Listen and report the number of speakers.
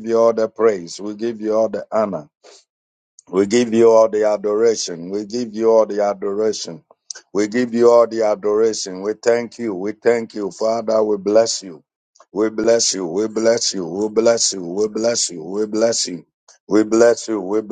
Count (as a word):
one